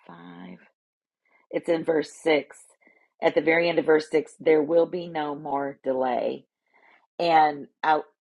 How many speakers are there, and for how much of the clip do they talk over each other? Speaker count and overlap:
1, no overlap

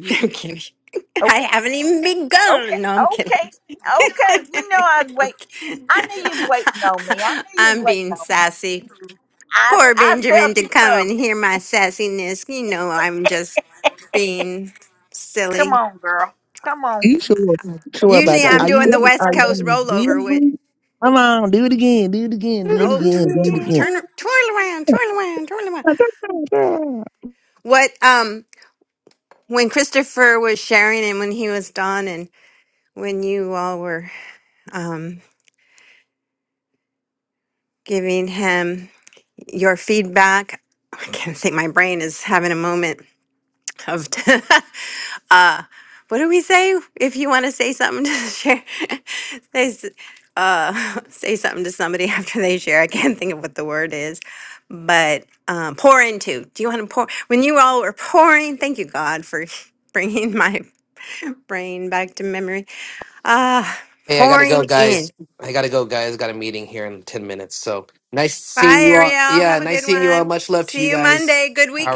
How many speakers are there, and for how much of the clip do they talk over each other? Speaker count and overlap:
4, about 16%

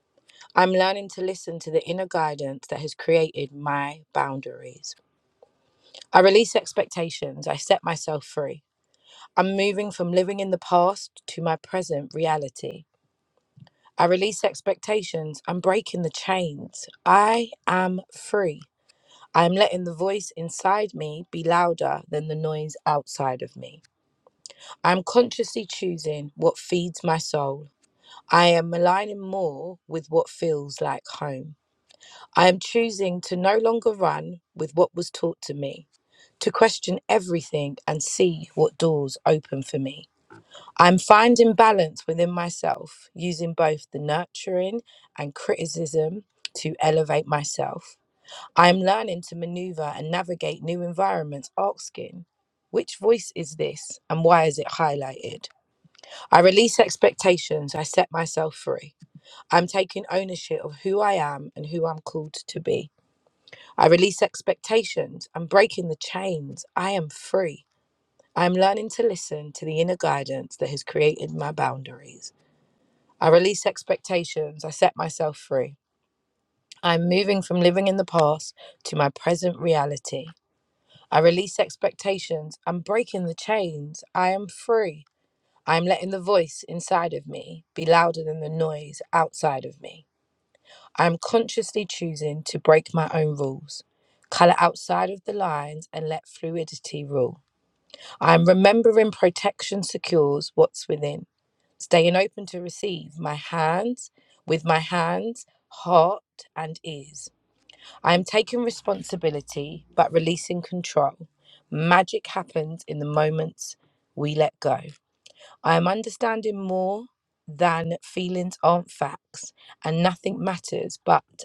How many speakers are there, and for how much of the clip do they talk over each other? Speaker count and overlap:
1, no overlap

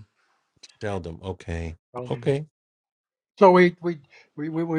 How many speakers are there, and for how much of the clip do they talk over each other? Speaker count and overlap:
2, about 3%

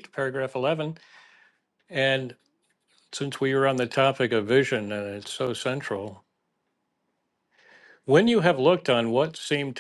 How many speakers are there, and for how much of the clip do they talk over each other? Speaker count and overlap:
1, no overlap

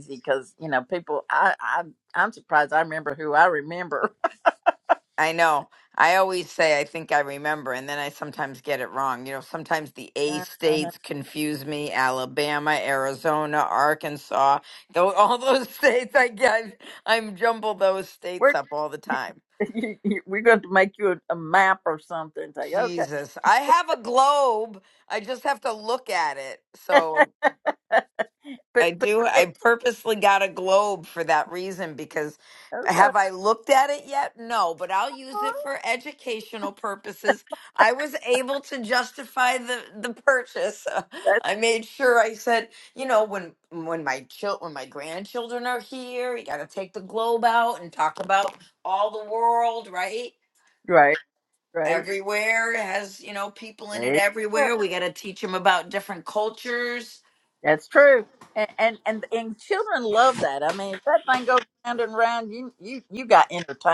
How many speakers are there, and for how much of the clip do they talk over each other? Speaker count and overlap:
2, about 4%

